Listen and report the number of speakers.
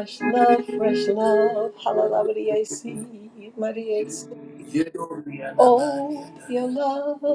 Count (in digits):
2